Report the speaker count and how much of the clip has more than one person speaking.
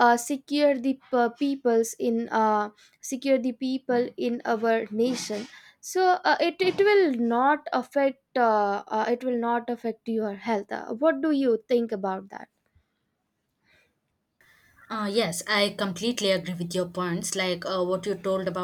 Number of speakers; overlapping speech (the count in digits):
2, no overlap